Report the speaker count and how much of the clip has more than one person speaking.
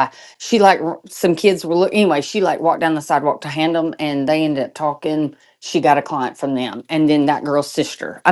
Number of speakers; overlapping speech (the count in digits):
1, no overlap